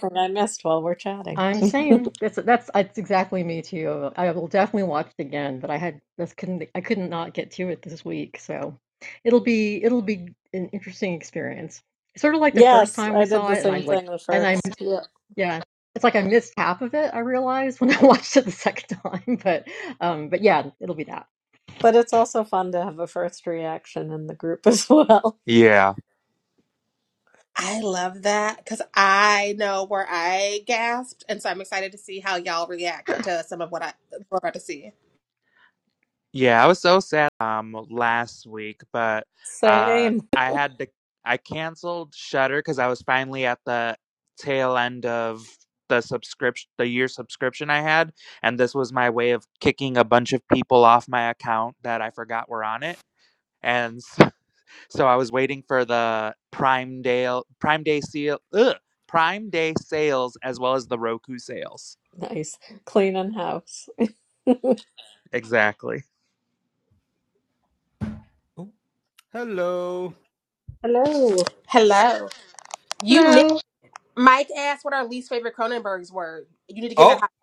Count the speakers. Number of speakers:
five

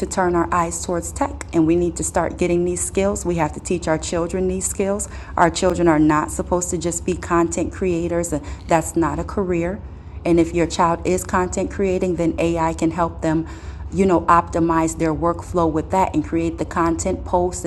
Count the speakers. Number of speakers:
one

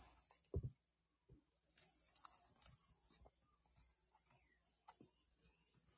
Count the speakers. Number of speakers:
zero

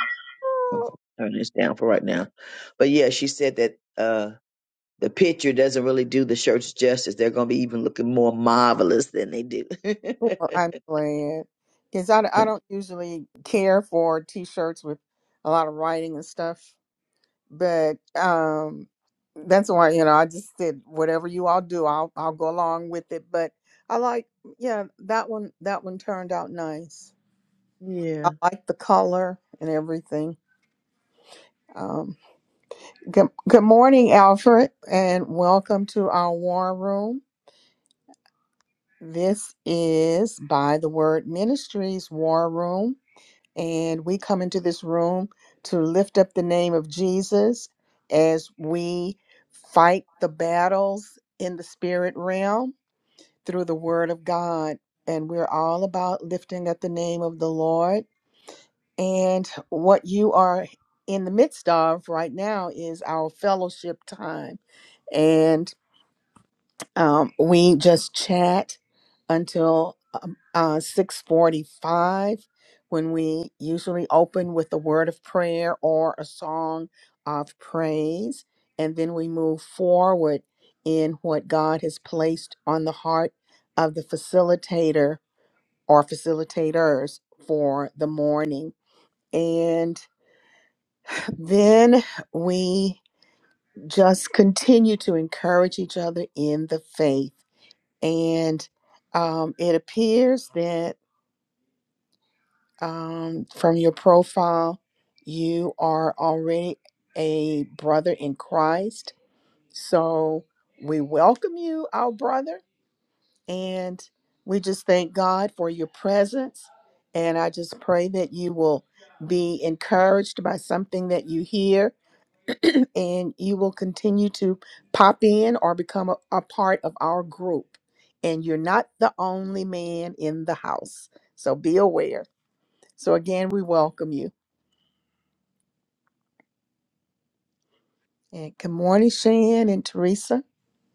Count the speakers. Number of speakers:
two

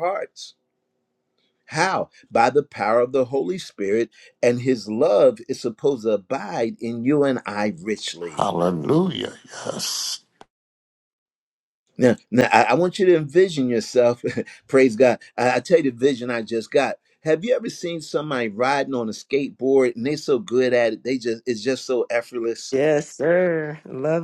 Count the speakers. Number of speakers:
three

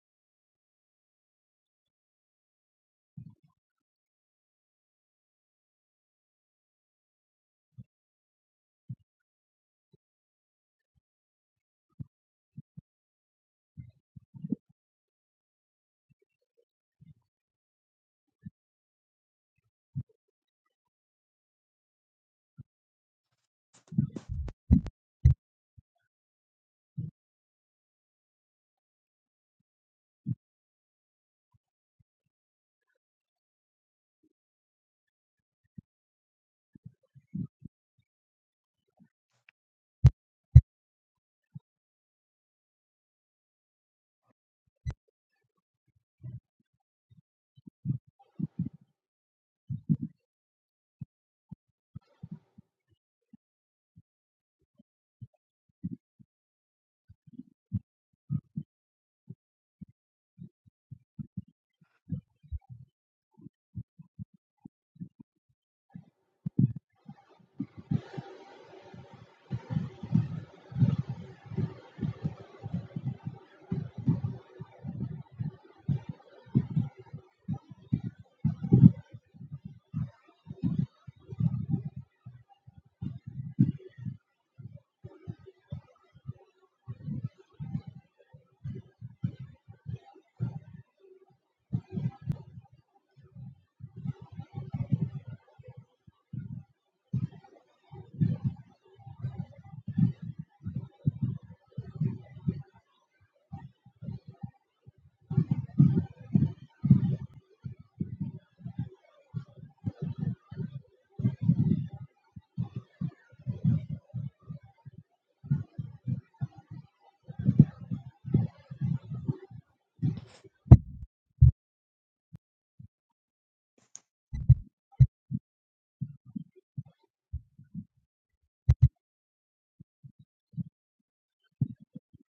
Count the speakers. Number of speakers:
zero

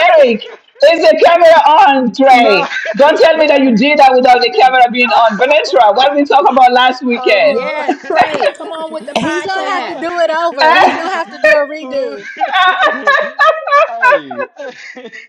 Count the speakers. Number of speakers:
four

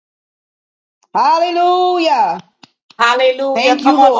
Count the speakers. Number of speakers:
two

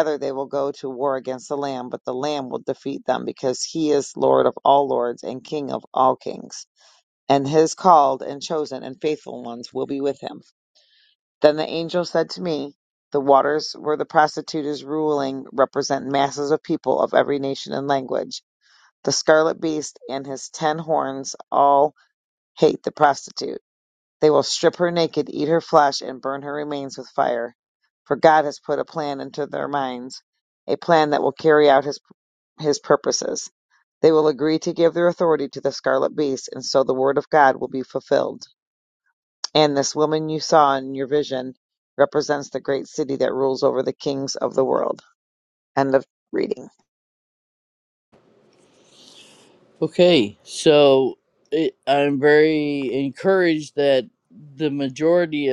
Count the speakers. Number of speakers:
two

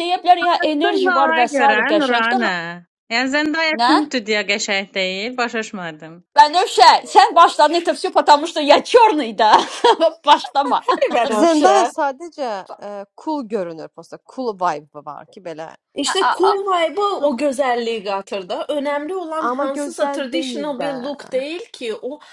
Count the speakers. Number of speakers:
four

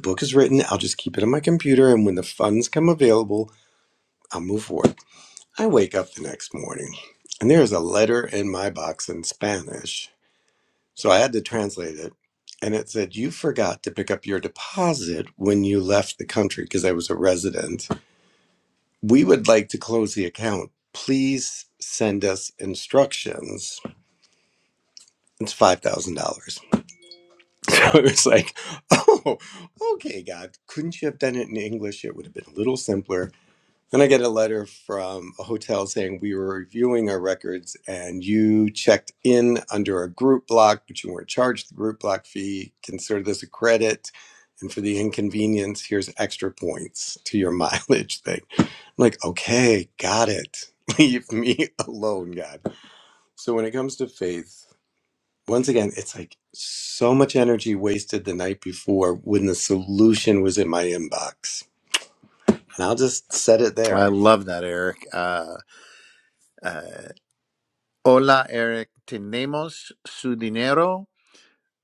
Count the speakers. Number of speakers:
two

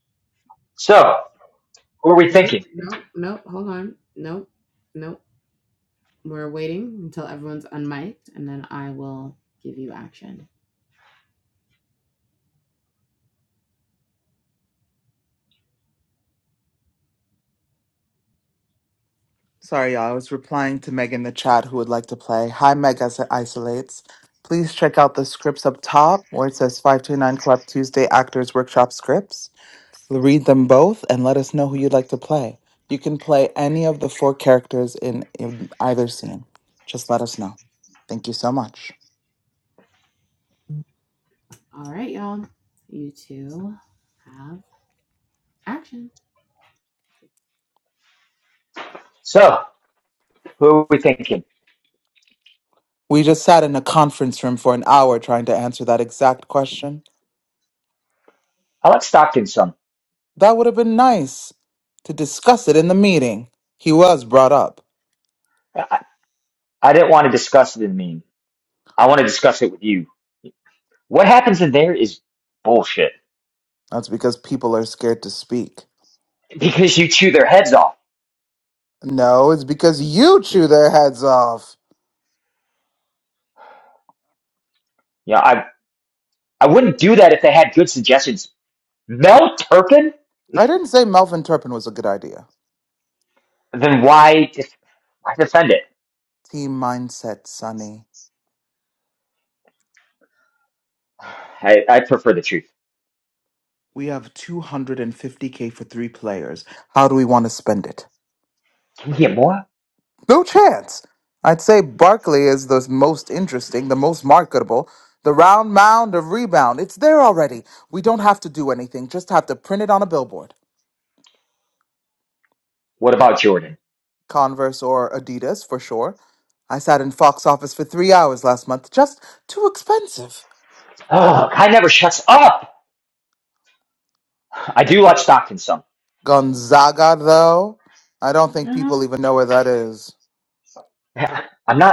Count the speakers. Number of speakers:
three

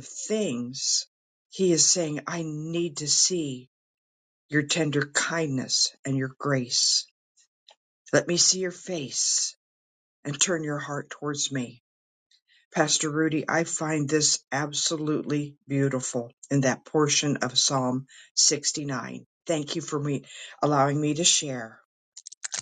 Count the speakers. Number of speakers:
one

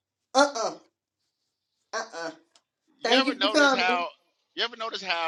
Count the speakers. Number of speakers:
two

